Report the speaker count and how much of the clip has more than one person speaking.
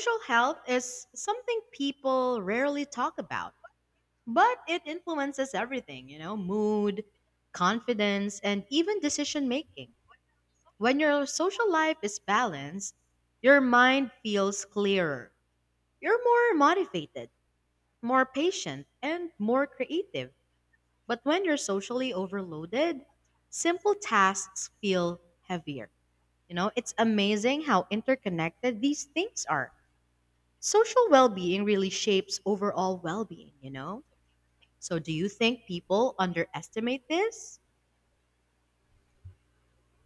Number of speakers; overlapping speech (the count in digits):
1, no overlap